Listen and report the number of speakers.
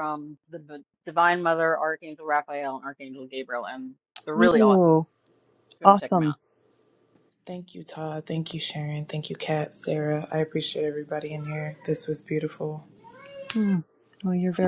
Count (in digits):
3